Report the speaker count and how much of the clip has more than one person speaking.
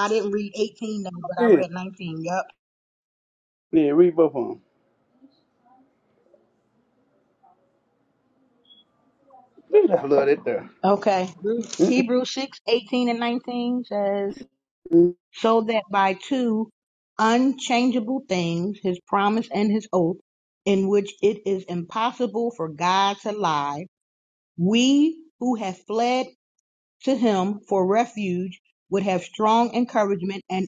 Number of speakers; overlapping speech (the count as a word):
two, about 1%